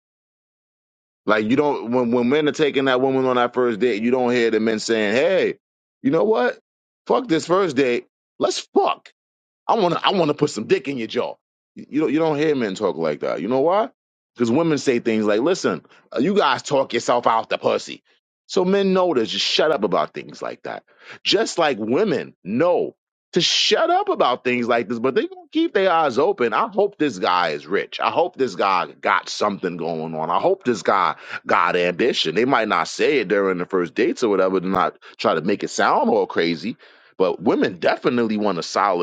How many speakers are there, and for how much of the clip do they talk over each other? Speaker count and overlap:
1, no overlap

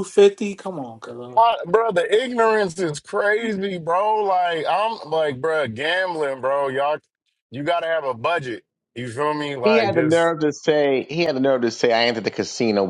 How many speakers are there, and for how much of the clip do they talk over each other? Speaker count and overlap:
3, about 4%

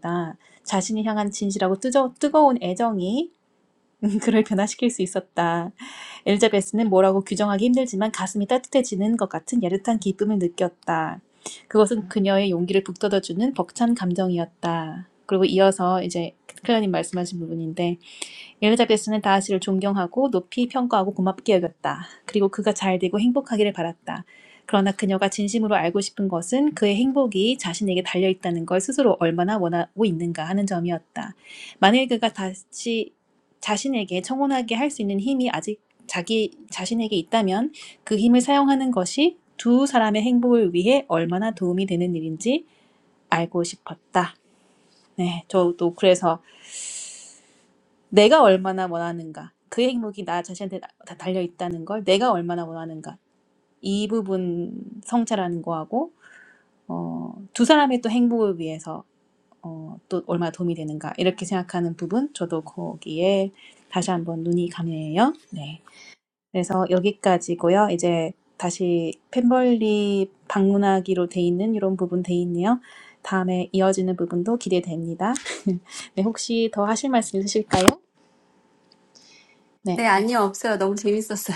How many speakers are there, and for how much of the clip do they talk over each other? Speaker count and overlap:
2, under 1%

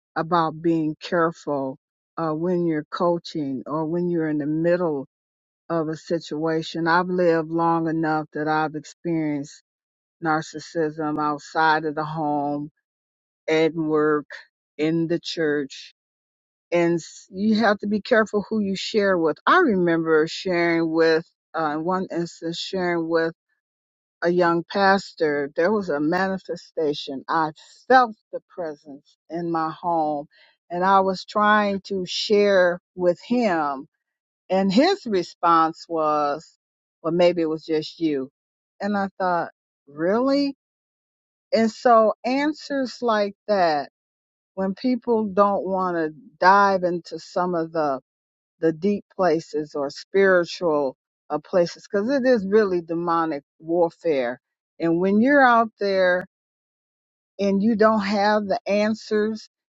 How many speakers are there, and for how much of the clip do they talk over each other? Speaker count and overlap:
1, no overlap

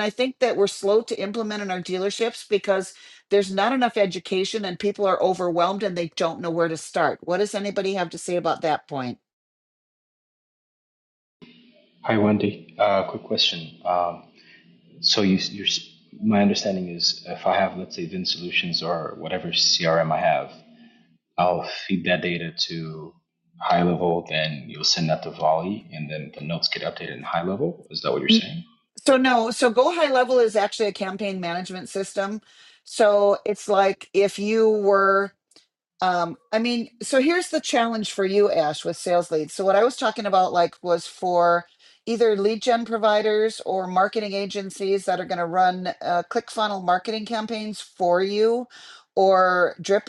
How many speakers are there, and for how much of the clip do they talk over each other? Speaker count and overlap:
2, under 1%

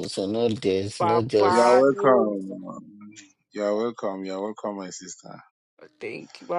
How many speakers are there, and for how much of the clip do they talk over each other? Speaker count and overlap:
3, about 20%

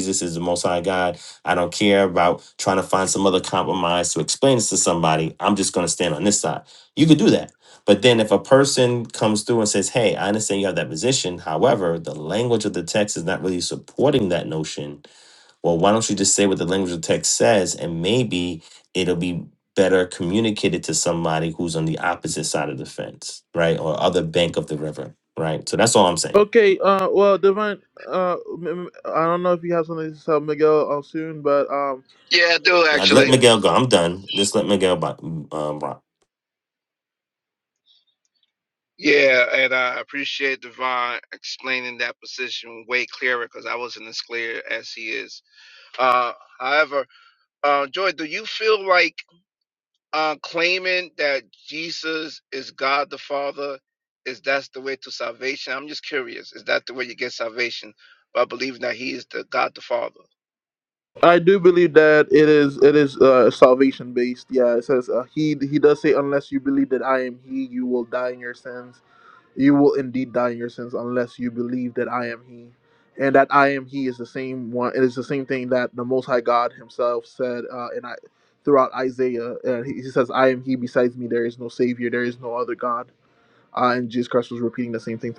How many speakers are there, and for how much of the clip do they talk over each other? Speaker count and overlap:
3, about 1%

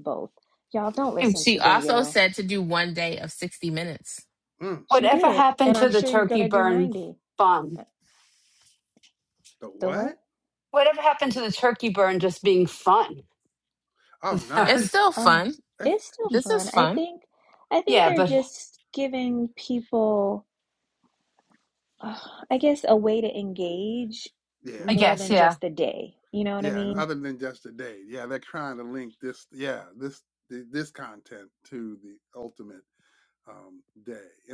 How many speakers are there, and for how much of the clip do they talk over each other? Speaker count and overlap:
4, about 18%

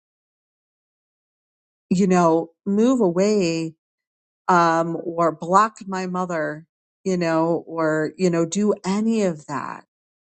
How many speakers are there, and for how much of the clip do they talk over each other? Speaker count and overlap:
1, no overlap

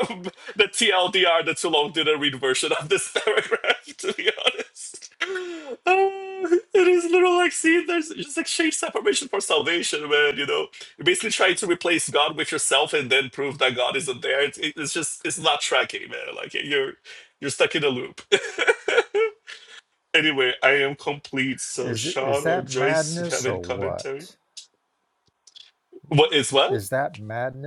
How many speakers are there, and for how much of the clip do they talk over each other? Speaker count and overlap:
2, about 9%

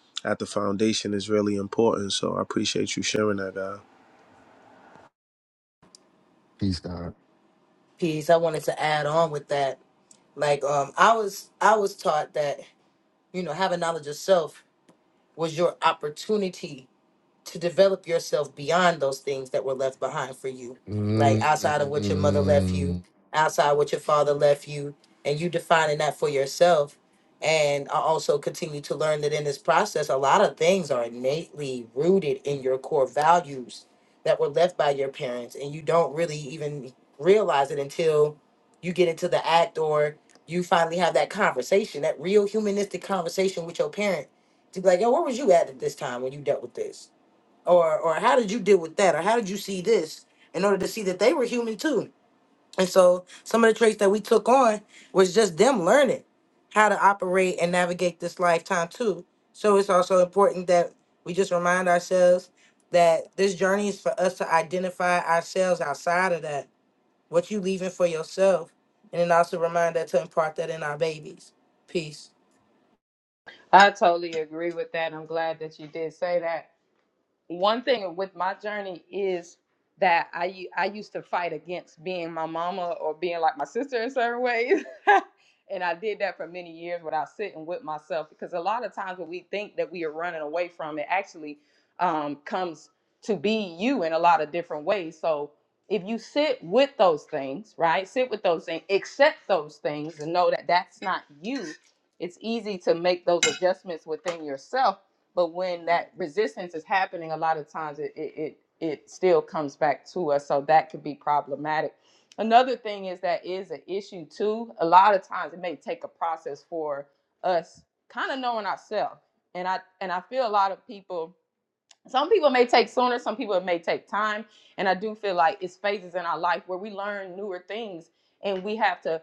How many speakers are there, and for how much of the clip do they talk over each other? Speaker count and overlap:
4, about 1%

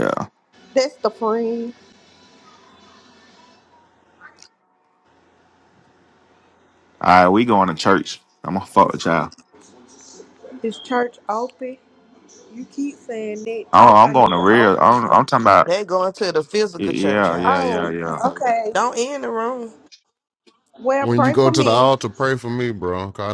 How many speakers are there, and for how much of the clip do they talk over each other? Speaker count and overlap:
4, about 17%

